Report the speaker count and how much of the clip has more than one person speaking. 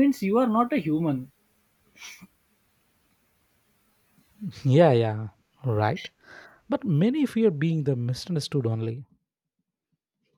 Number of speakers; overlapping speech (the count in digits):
2, no overlap